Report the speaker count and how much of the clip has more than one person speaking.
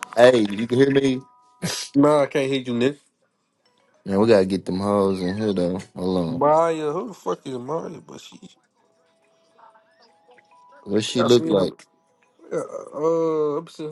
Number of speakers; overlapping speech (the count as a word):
two, about 5%